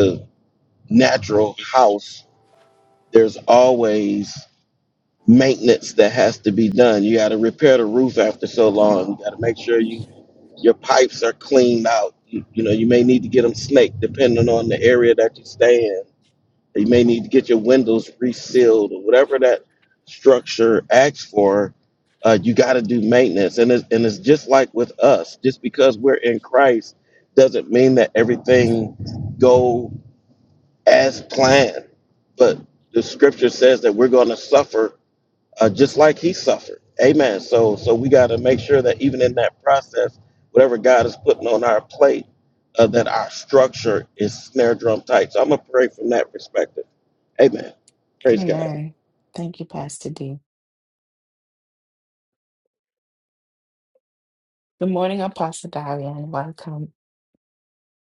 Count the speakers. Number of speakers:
two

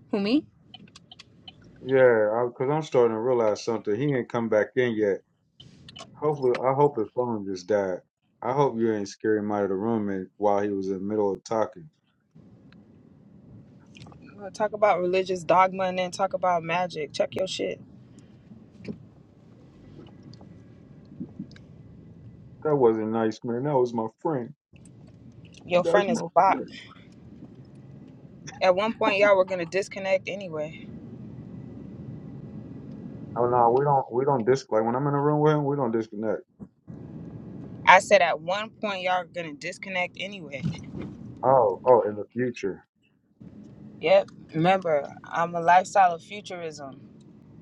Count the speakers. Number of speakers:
two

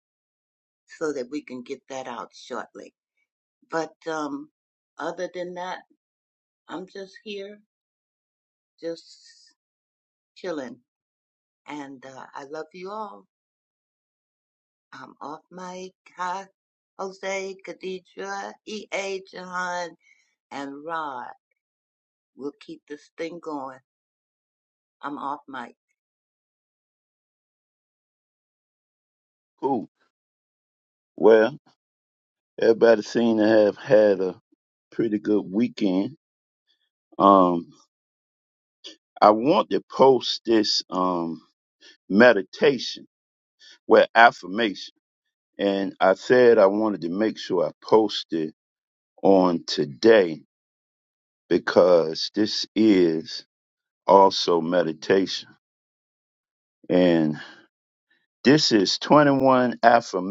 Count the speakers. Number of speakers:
two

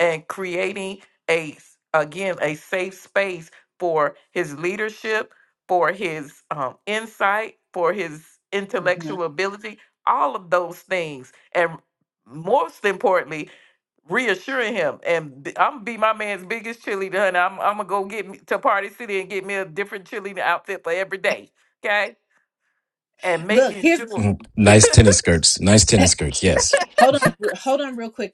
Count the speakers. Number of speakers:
three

